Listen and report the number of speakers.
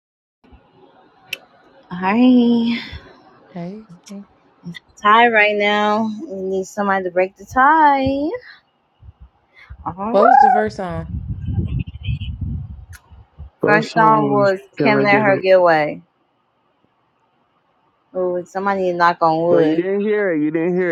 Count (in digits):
3